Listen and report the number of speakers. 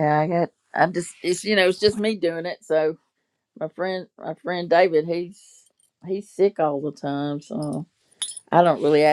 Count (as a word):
one